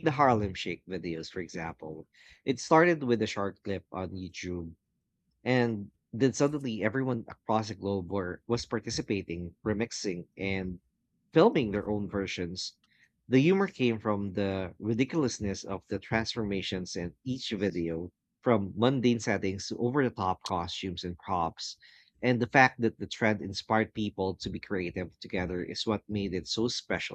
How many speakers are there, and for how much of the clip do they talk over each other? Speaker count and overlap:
one, no overlap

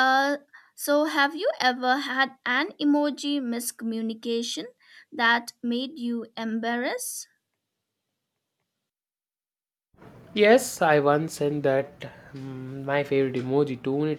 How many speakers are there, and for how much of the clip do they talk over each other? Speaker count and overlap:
two, no overlap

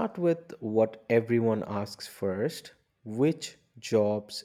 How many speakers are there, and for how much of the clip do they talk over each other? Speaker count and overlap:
one, no overlap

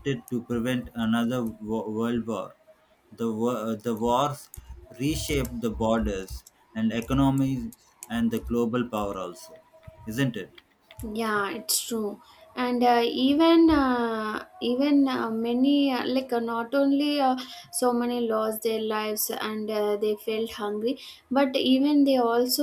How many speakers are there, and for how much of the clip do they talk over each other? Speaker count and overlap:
two, no overlap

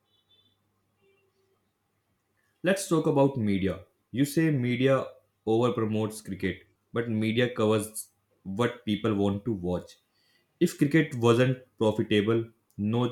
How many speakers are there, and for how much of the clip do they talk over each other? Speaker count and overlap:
one, no overlap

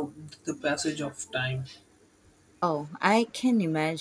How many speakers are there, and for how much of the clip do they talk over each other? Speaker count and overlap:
two, no overlap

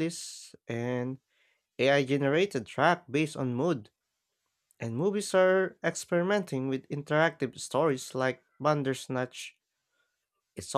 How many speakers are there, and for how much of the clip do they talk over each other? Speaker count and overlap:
one, no overlap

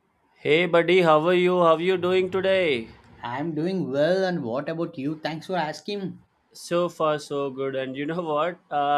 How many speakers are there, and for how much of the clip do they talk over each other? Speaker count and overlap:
two, no overlap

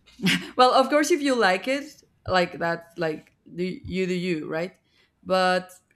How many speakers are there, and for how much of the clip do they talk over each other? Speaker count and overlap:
one, no overlap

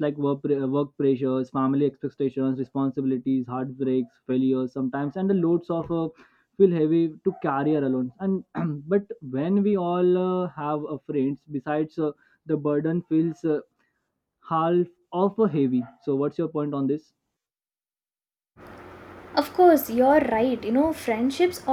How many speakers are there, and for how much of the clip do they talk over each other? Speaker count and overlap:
two, no overlap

